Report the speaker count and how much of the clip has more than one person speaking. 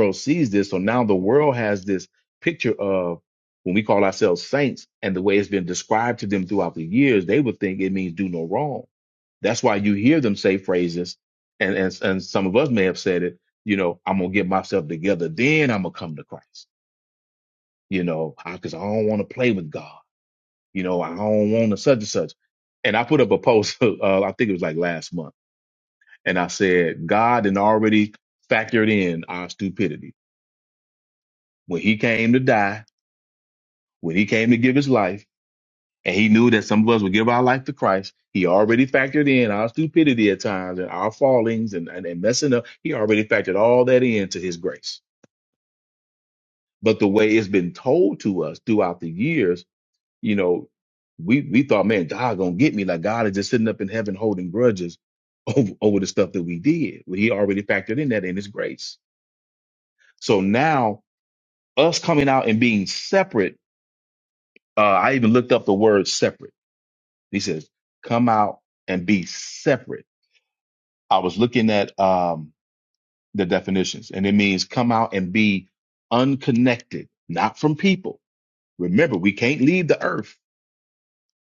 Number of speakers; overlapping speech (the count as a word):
one, no overlap